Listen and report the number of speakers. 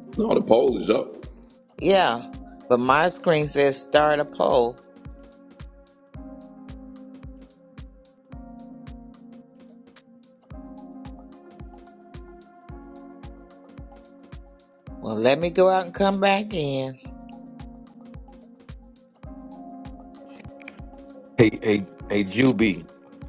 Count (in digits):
3